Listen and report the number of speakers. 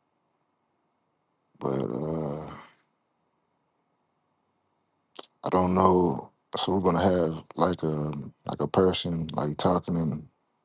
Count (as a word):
one